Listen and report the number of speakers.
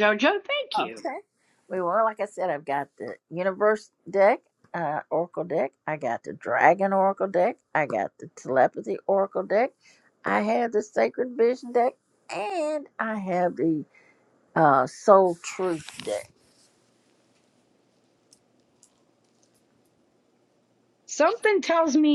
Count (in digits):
2